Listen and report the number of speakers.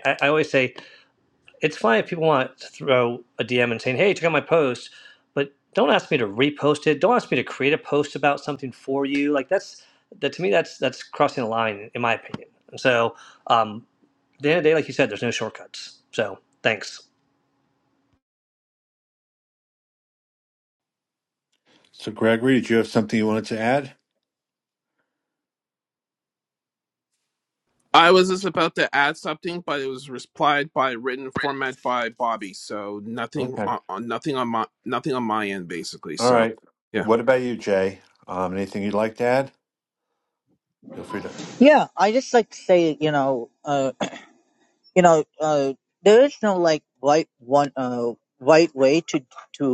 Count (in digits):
4